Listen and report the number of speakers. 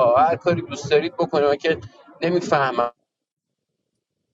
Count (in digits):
1